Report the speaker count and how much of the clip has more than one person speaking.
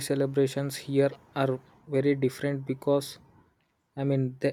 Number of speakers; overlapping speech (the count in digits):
1, no overlap